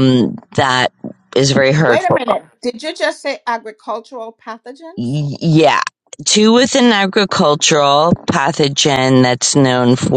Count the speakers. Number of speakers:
2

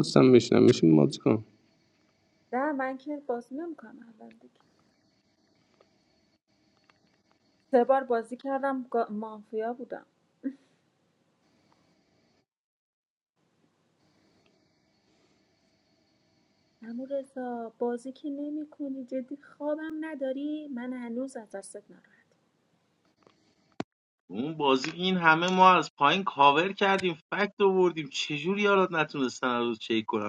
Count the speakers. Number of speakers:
3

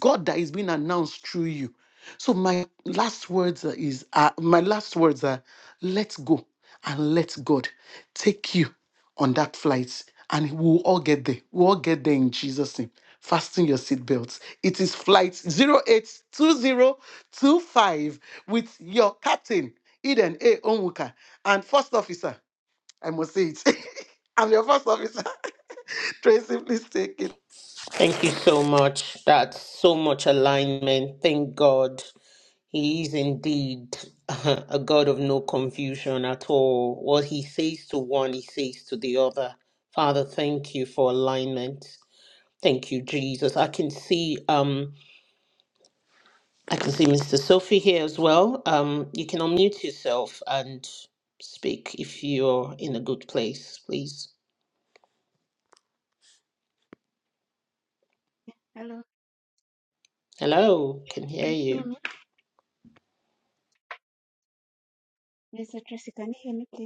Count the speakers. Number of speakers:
3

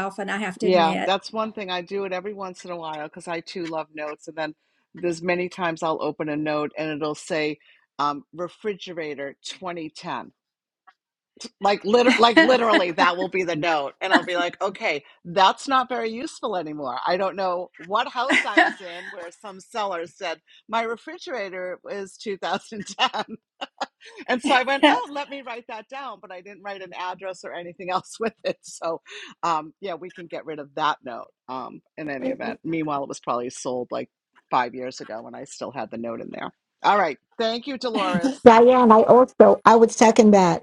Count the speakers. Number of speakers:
3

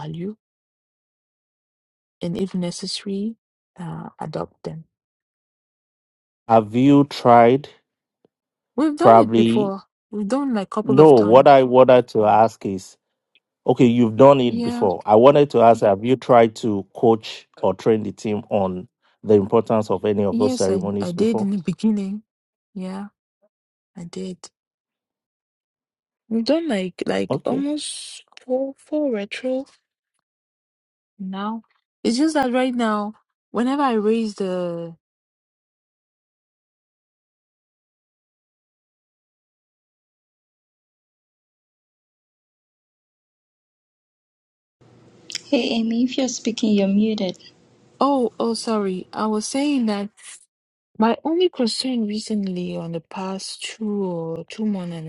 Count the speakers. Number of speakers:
3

